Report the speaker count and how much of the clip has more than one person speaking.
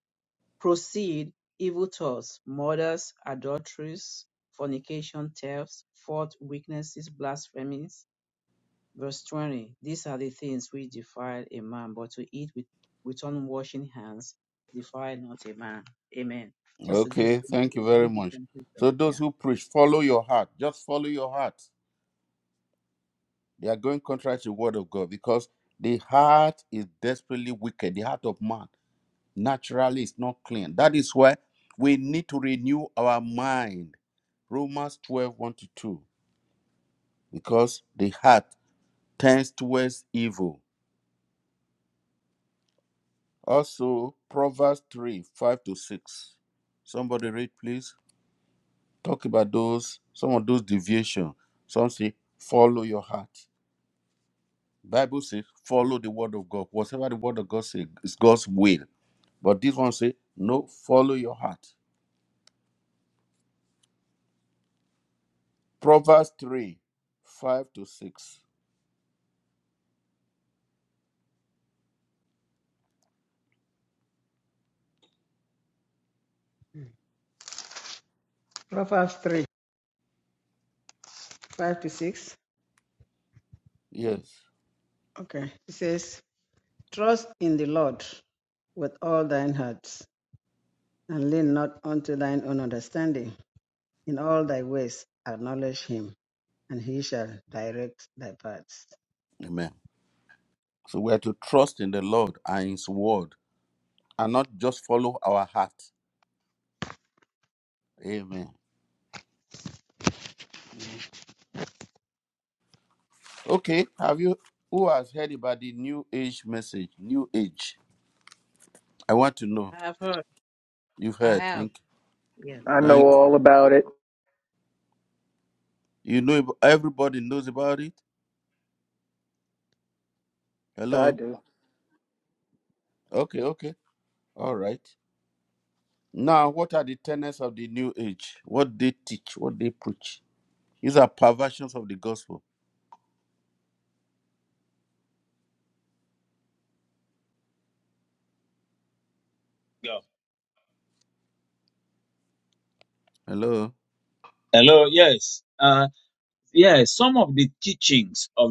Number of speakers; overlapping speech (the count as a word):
five, about 2%